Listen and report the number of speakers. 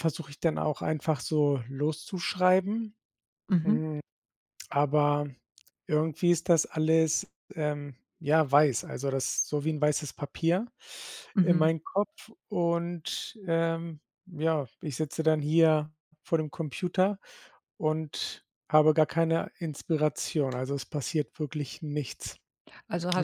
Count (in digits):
2